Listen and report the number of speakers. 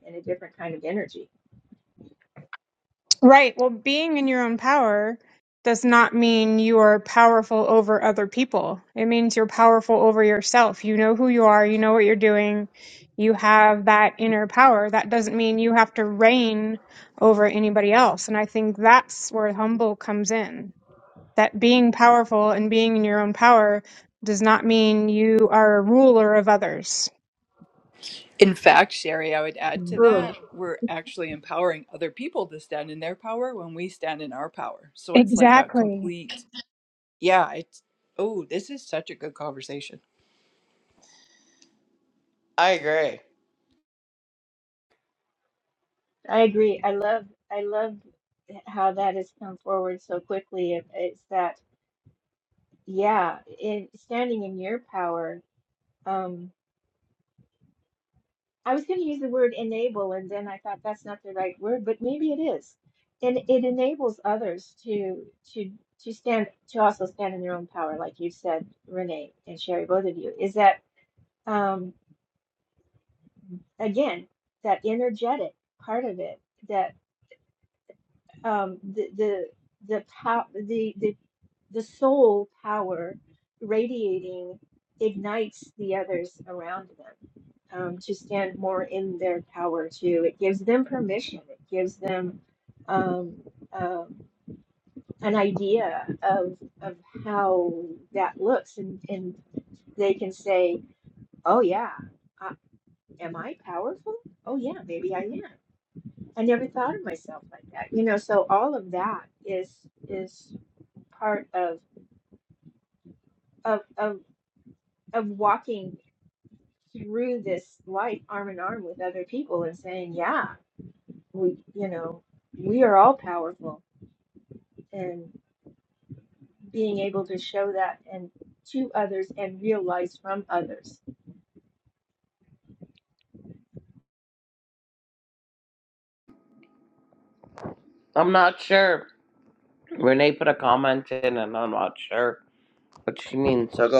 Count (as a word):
four